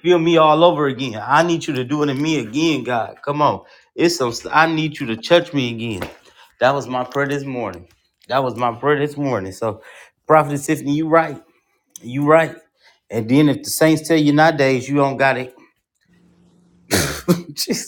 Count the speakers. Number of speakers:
1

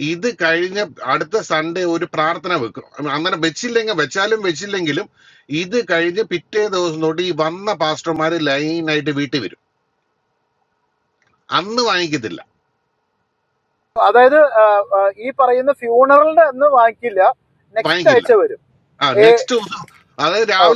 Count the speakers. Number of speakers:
2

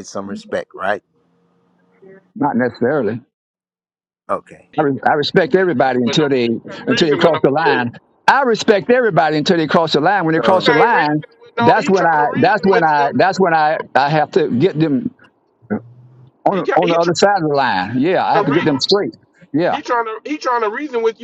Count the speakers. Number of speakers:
3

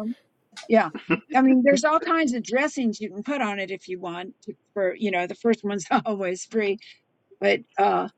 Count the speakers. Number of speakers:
1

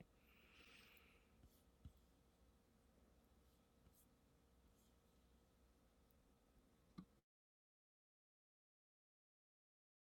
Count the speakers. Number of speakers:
0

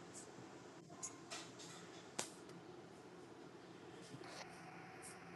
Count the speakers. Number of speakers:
0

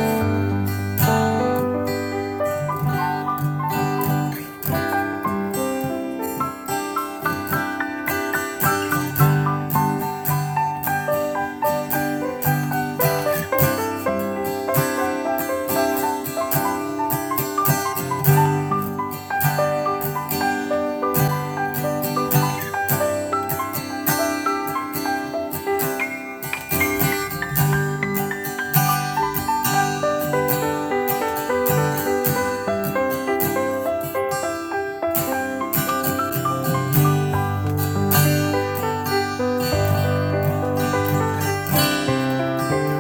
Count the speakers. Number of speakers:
0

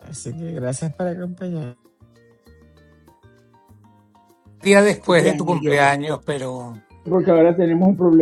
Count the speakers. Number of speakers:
3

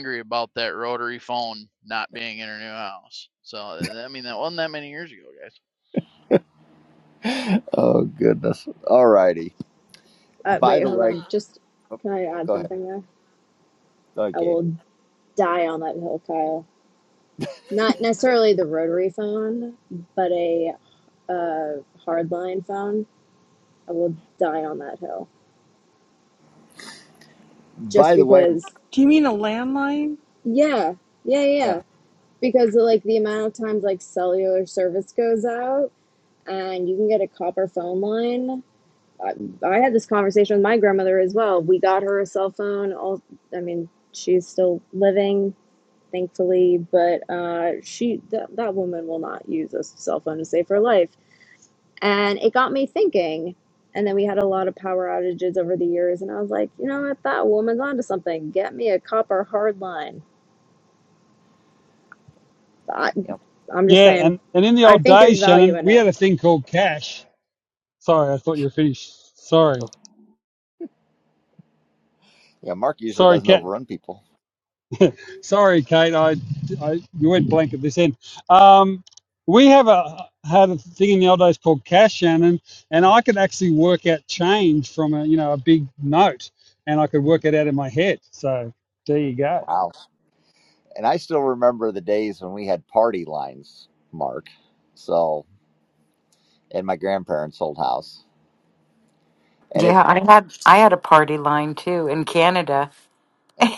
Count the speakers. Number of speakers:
6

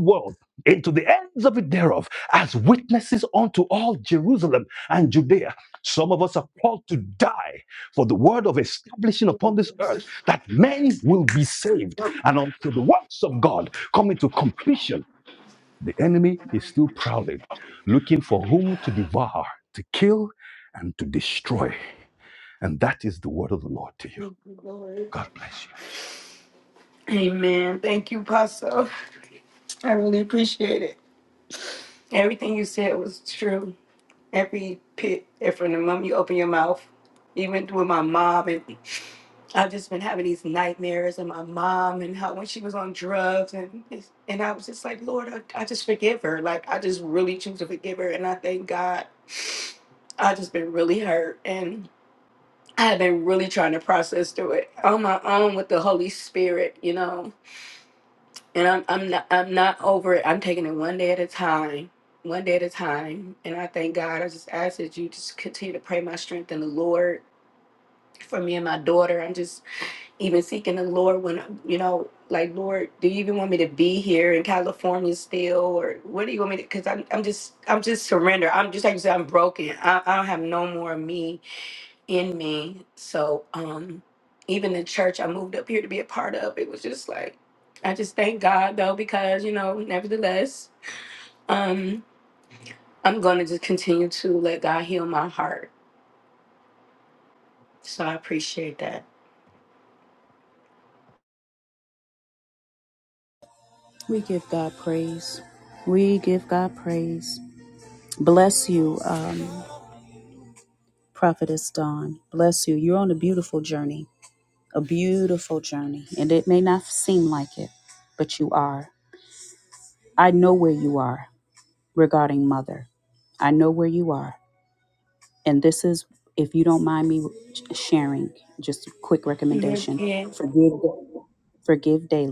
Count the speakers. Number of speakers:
3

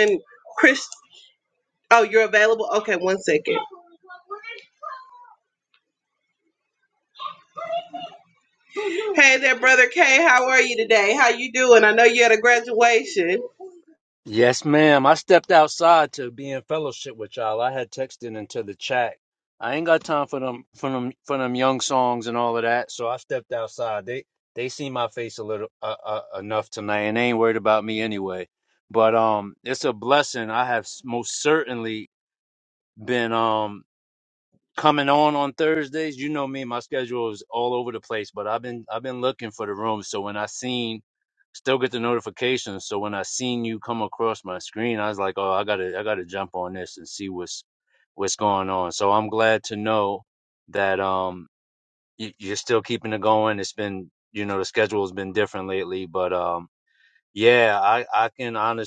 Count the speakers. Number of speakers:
2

